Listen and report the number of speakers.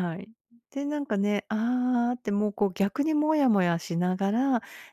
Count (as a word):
one